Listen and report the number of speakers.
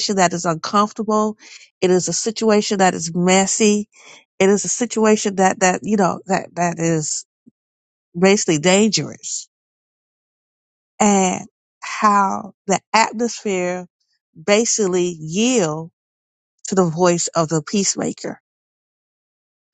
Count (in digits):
1